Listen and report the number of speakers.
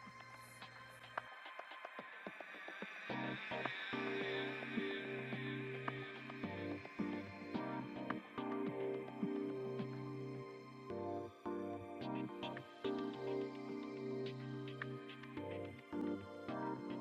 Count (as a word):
zero